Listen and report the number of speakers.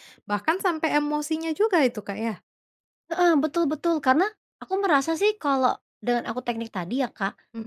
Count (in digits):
2